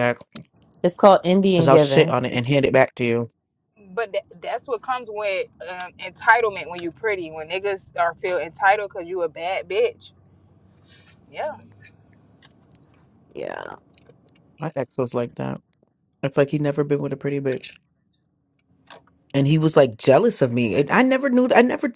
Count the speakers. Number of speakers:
3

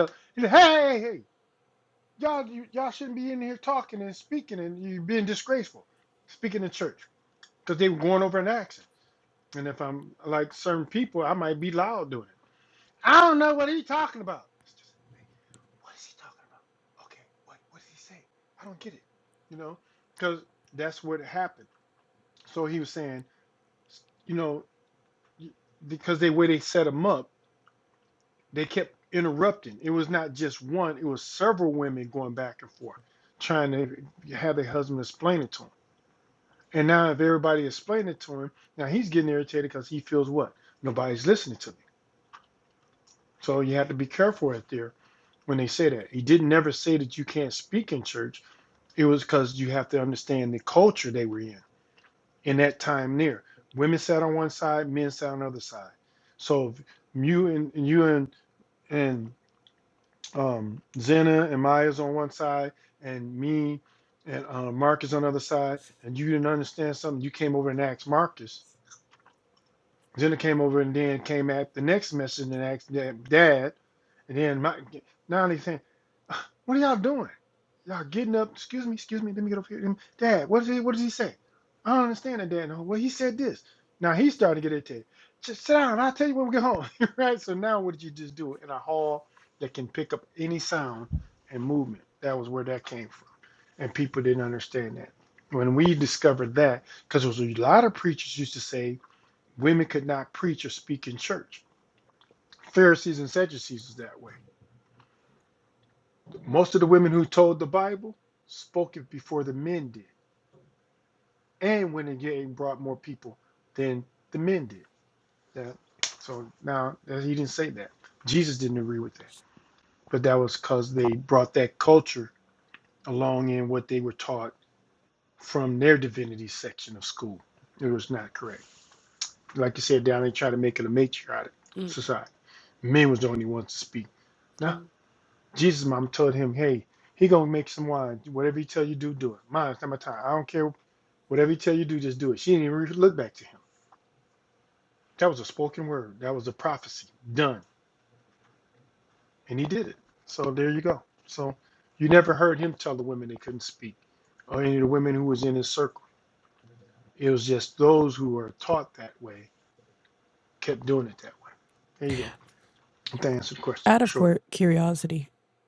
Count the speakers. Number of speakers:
2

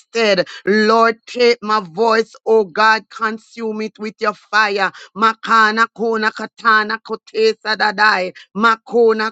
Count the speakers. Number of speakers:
1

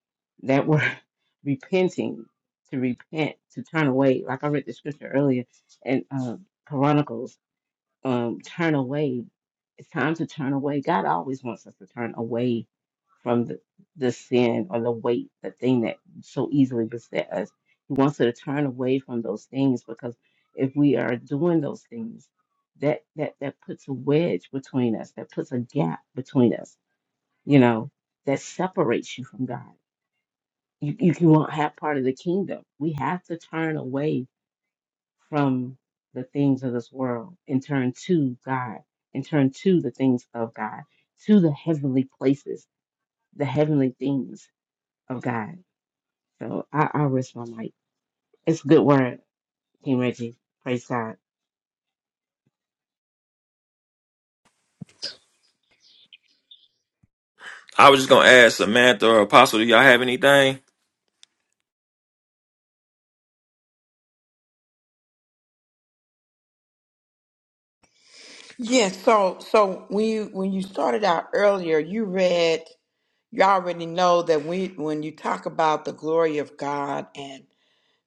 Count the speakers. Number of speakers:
3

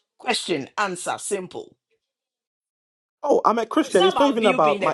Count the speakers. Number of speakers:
2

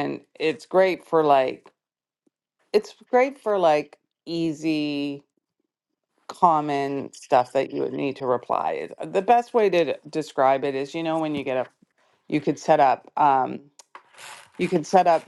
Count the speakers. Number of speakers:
1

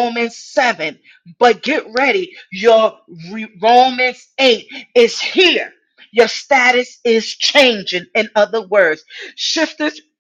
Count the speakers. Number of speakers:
1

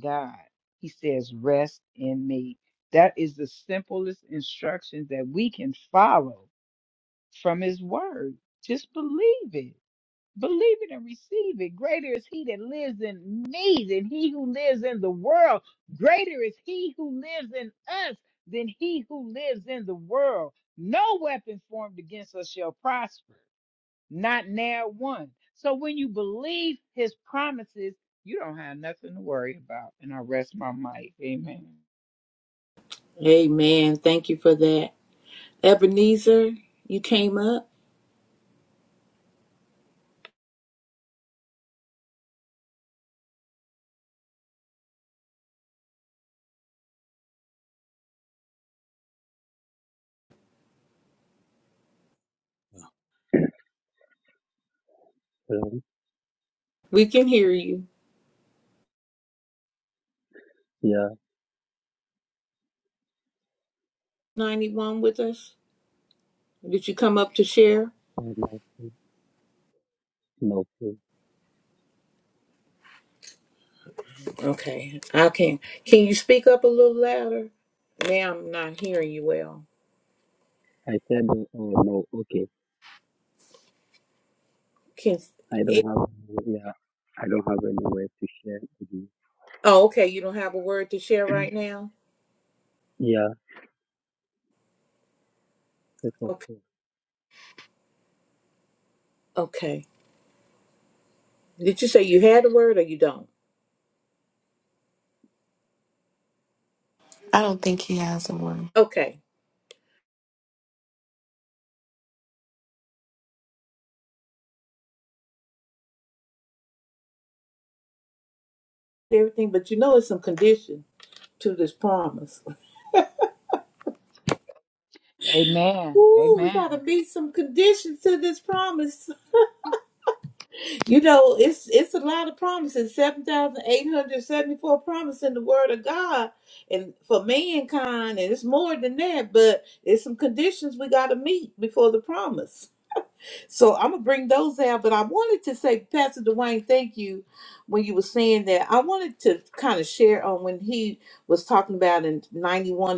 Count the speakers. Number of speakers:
4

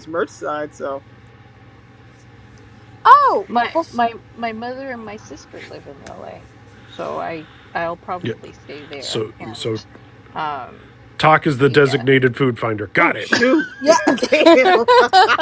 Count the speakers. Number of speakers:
4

